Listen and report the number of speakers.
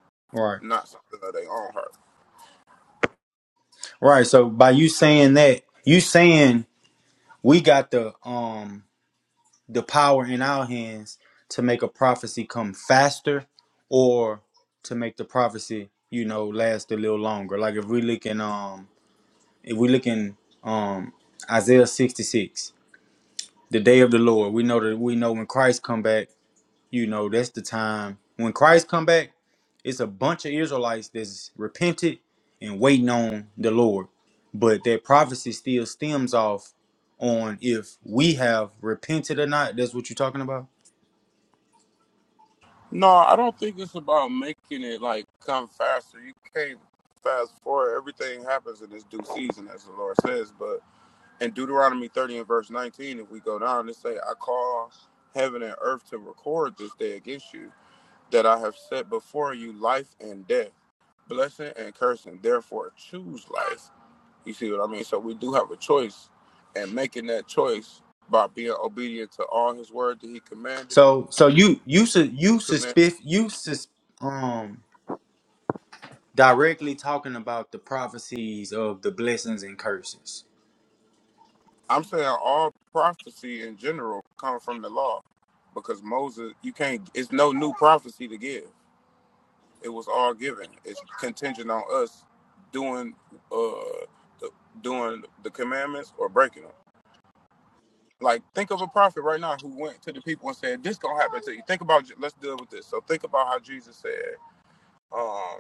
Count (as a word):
two